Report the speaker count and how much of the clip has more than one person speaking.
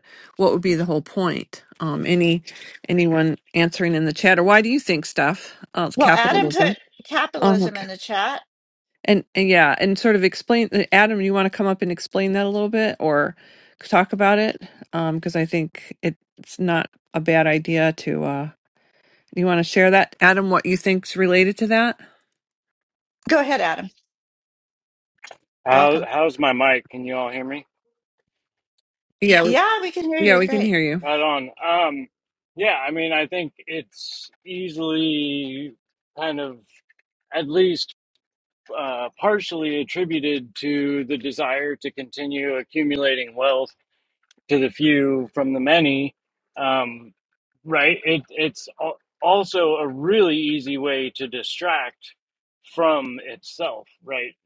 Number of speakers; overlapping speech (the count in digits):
3, about 4%